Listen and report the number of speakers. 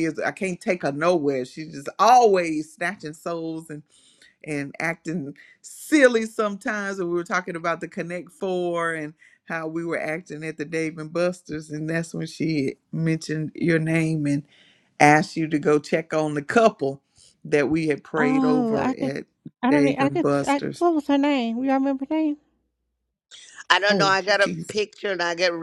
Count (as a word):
three